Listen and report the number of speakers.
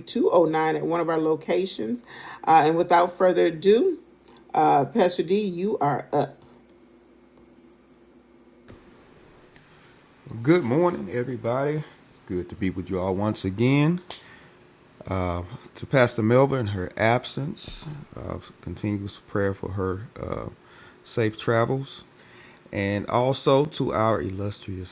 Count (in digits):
2